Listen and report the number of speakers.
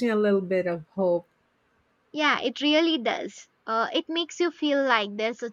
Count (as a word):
two